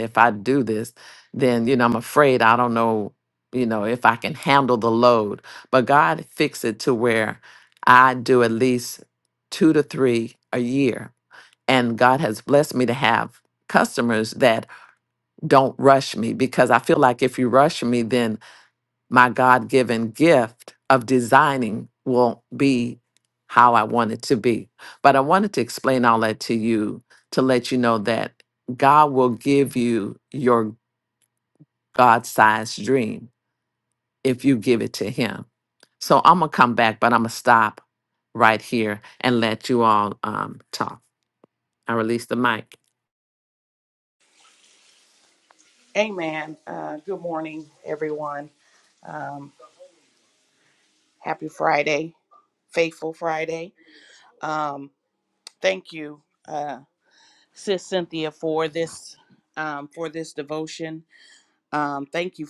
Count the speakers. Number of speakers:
2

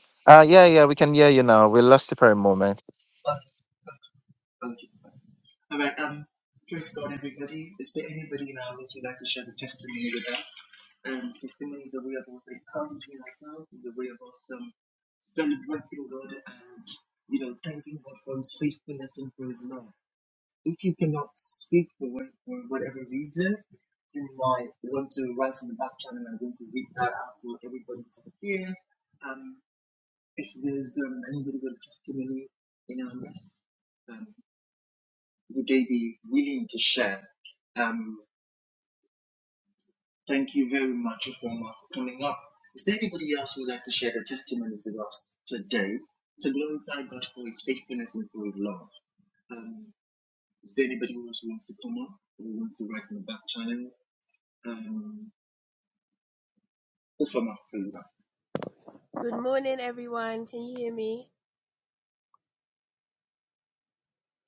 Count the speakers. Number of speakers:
3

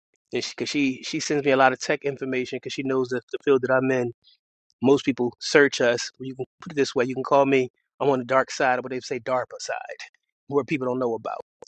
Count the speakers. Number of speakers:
1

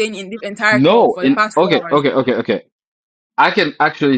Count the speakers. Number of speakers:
2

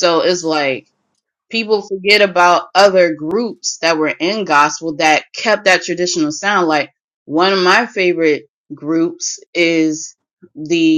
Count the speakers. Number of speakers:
1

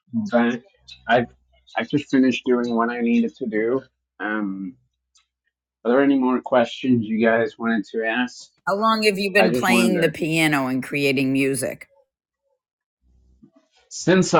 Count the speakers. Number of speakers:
2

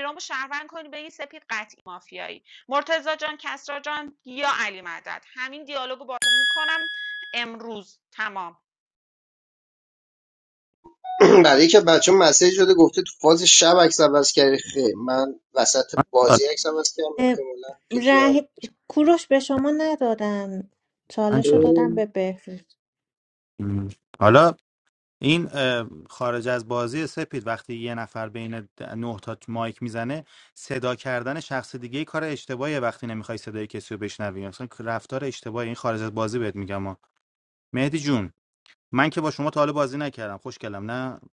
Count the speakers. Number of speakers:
4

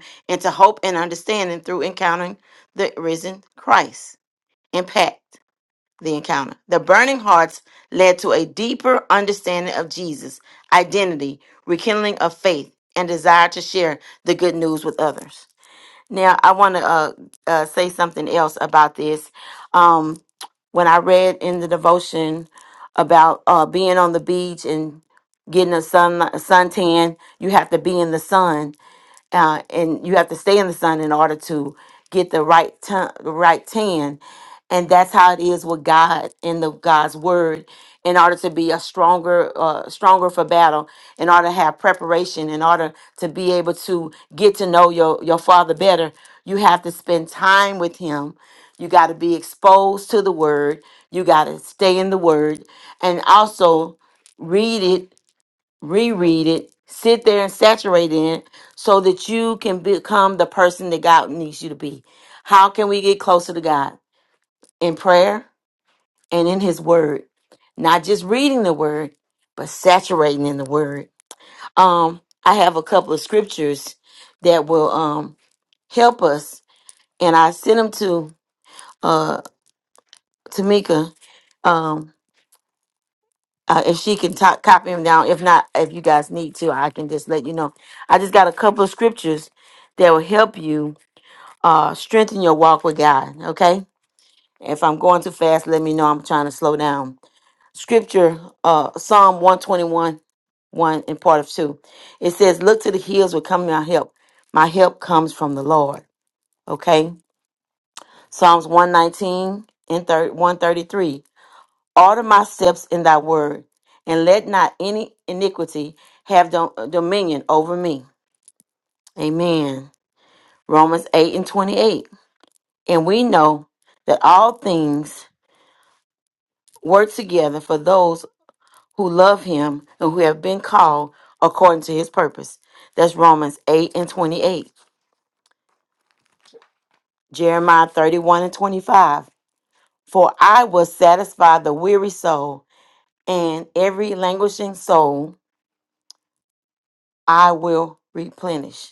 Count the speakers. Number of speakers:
1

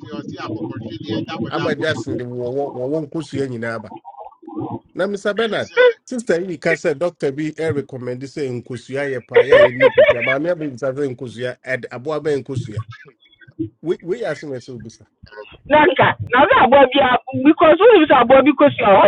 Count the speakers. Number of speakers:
3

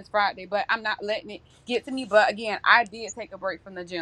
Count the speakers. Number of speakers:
1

